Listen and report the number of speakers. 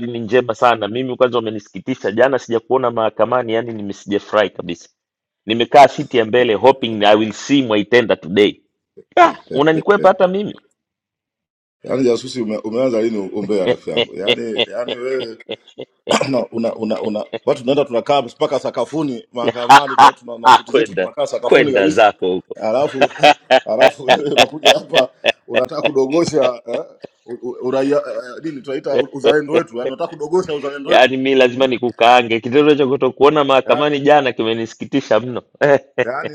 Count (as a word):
two